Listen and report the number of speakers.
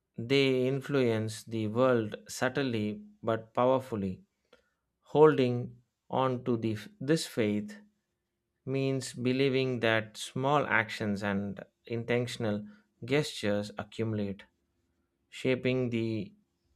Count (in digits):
1